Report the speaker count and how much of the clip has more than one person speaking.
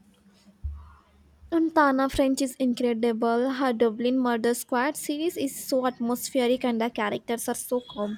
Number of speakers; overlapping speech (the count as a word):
one, no overlap